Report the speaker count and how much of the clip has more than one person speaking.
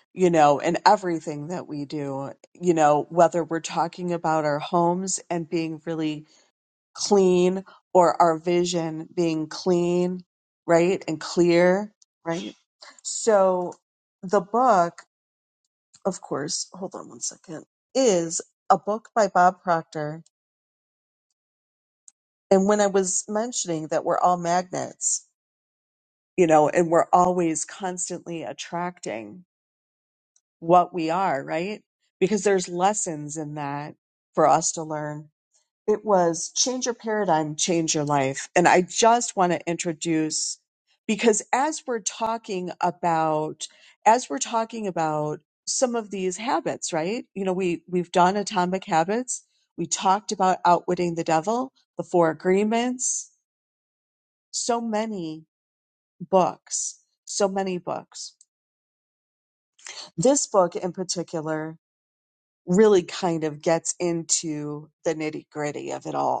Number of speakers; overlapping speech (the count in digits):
1, no overlap